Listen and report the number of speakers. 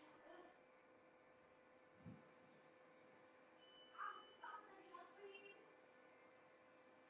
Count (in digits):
0